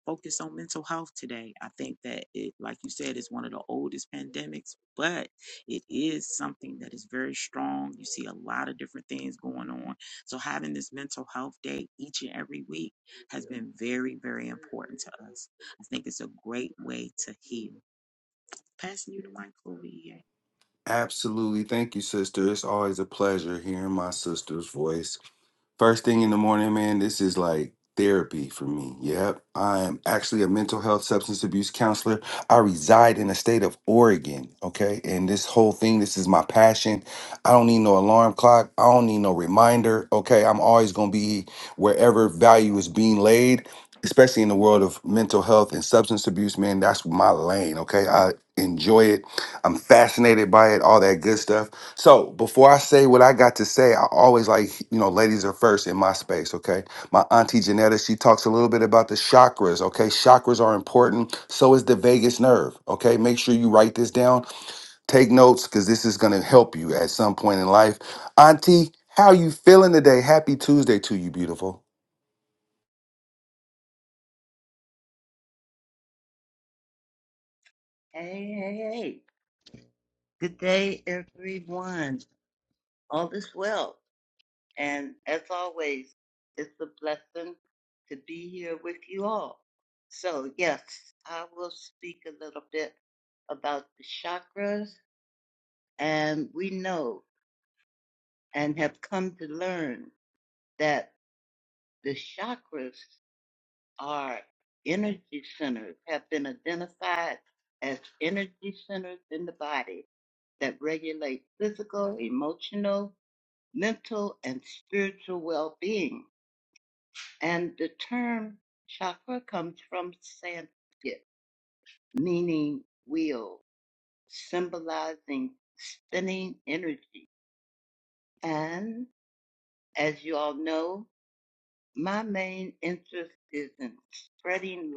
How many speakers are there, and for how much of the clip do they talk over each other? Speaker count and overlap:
3, no overlap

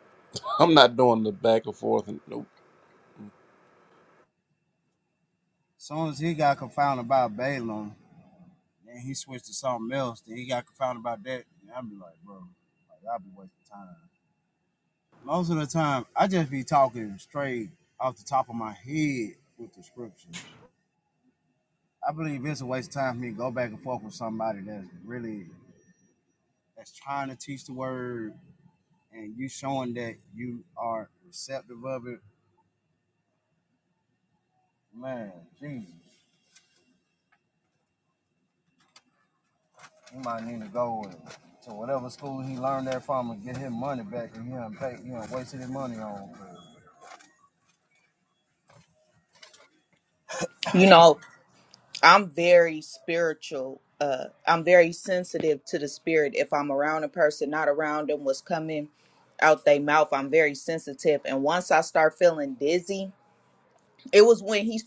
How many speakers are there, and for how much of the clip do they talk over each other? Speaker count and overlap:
3, no overlap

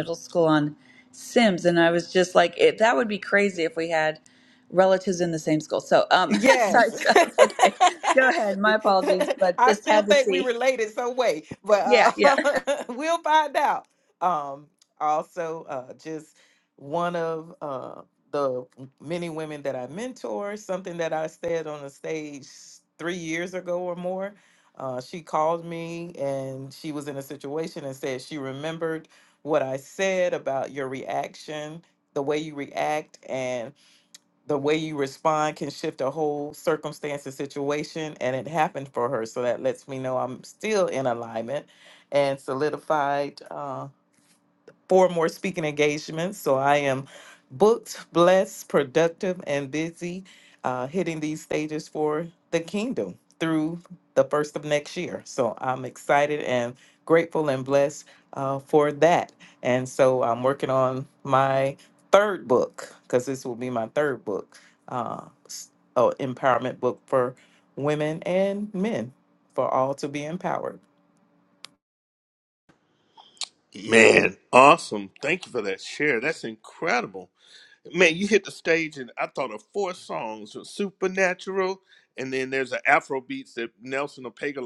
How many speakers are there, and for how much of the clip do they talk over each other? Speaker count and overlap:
3, about 2%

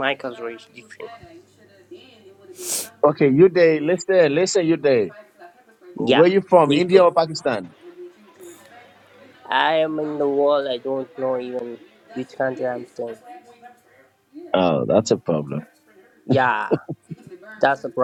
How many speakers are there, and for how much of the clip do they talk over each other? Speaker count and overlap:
2, about 4%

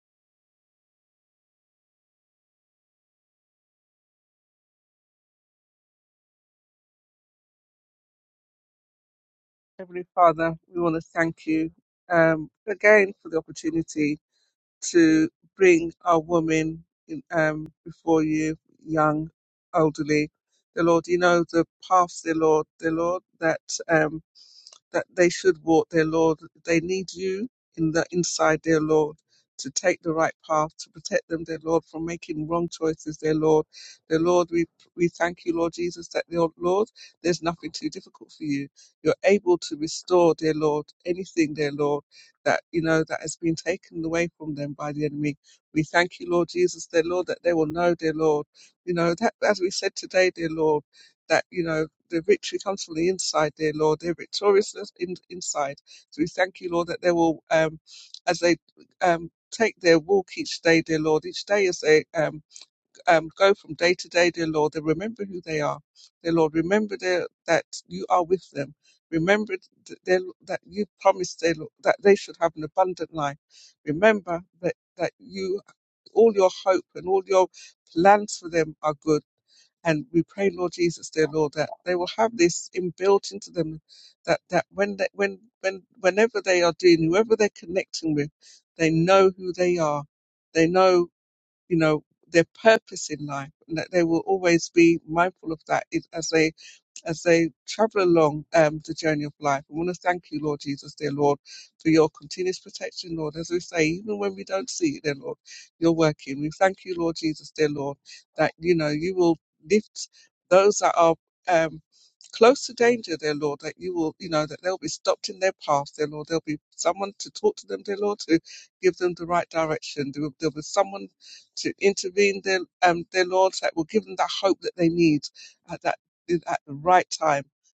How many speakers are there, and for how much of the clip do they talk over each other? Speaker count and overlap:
1, no overlap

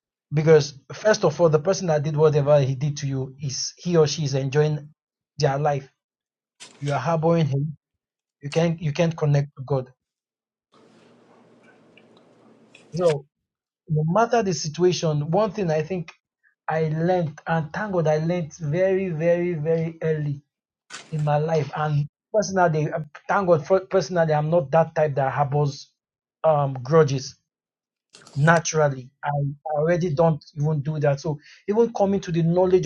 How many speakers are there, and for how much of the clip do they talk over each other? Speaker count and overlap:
1, no overlap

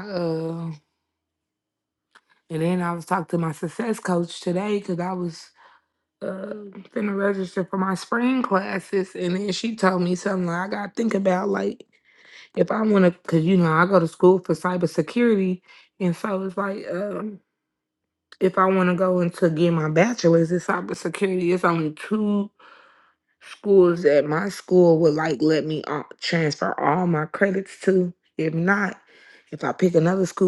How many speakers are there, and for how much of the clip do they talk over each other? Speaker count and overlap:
1, no overlap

